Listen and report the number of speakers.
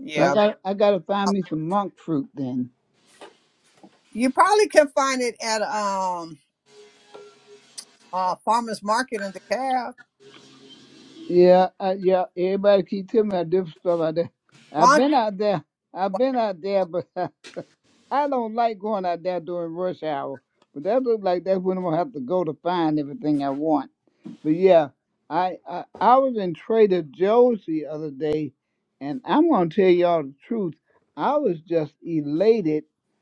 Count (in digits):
2